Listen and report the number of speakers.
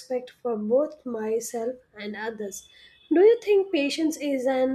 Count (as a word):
one